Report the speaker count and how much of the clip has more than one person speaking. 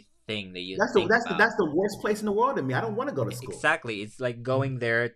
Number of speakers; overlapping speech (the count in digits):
2, about 22%